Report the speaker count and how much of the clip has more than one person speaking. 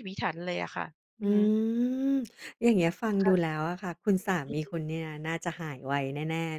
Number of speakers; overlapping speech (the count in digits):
2, about 7%